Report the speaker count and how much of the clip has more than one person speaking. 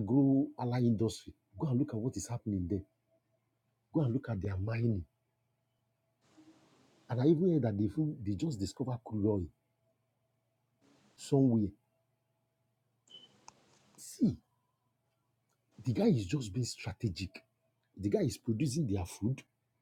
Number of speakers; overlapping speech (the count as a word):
one, no overlap